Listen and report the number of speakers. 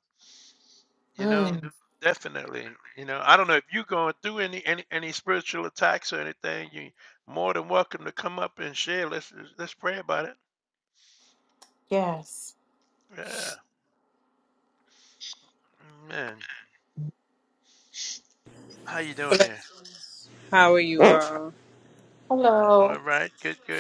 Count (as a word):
three